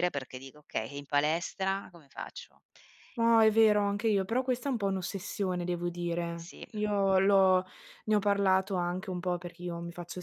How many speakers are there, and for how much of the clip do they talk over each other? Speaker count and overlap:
2, no overlap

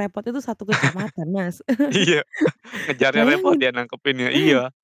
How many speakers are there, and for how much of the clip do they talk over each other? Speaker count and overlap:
2, about 17%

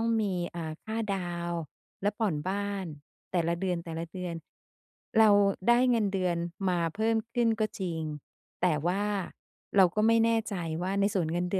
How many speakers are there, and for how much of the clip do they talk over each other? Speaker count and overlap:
1, no overlap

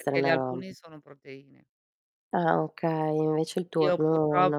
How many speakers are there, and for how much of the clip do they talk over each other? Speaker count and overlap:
2, about 32%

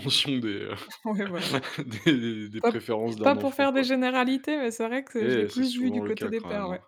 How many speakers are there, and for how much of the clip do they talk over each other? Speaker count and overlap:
2, about 35%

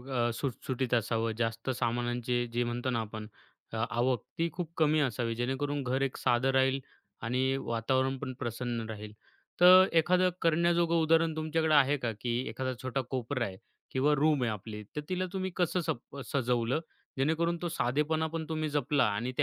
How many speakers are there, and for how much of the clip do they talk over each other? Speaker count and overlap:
1, no overlap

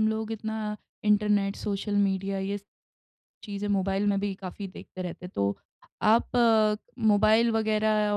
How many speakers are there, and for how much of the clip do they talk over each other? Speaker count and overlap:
1, no overlap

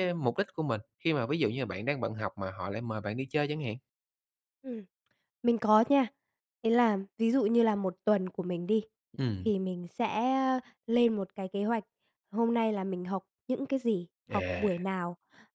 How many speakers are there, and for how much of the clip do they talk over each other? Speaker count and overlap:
2, about 3%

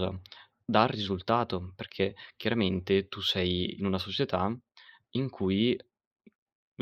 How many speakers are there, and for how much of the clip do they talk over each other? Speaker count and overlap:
1, no overlap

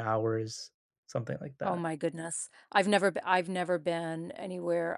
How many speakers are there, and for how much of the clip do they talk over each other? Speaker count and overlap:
2, about 4%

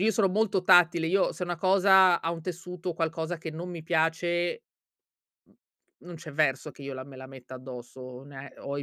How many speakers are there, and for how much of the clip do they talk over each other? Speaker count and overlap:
1, no overlap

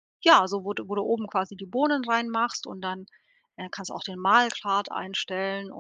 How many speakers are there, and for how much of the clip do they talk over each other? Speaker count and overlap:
1, no overlap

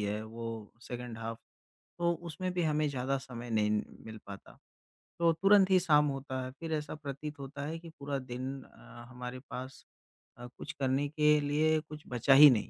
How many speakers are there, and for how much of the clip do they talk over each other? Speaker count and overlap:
1, no overlap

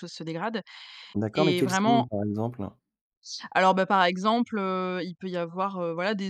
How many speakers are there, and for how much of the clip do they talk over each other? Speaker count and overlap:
2, about 11%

